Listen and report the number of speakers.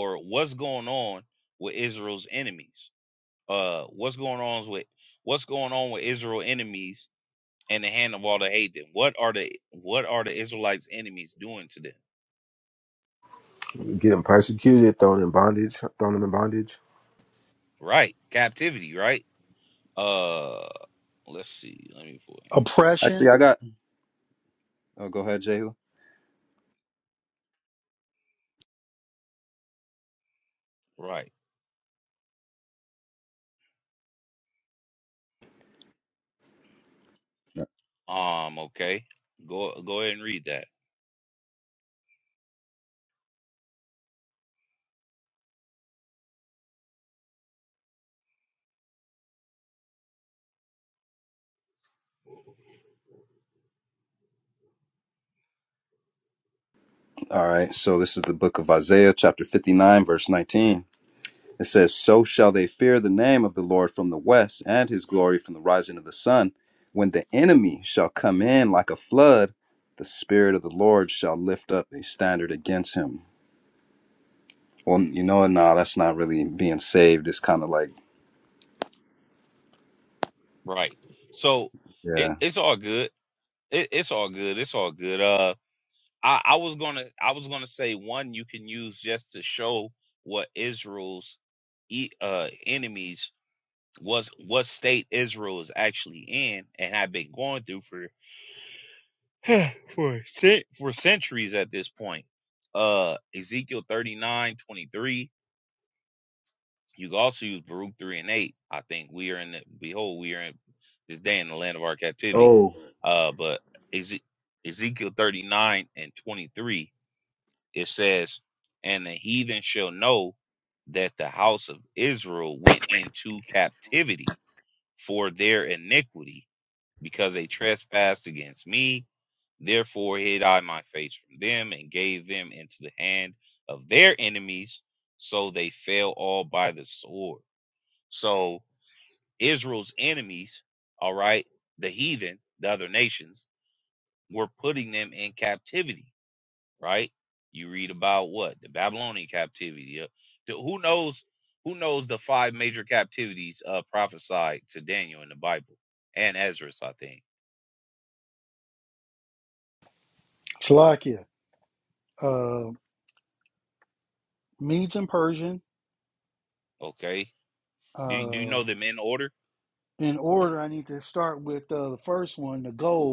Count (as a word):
four